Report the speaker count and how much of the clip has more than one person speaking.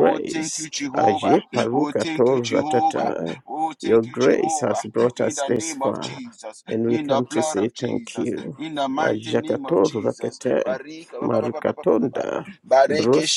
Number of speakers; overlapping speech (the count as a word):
two, about 68%